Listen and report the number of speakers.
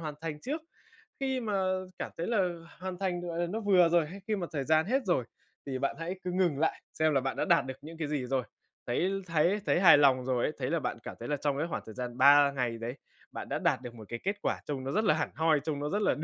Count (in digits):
1